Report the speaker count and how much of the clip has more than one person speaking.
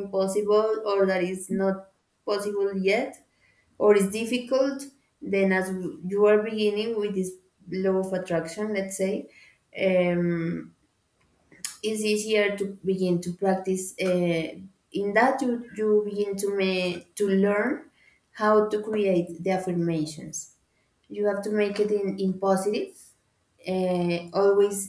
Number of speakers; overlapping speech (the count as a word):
one, no overlap